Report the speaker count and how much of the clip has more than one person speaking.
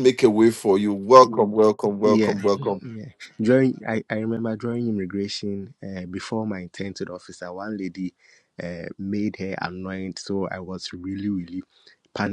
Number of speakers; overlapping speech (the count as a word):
two, about 3%